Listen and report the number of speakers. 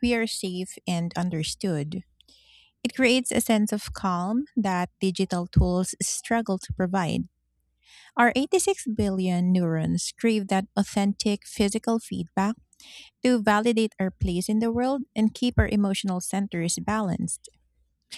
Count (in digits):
1